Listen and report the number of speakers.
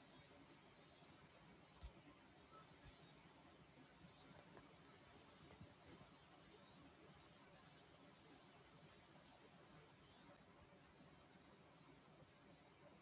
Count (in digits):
0